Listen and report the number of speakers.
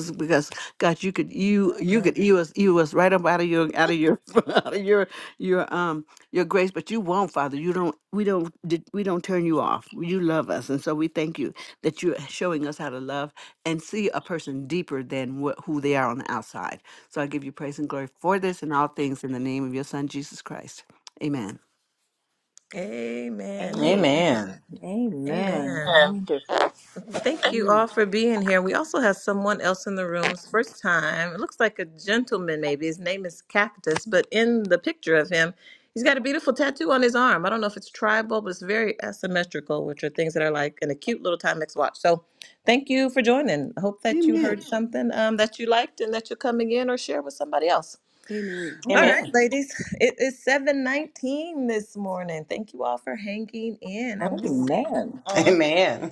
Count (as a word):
four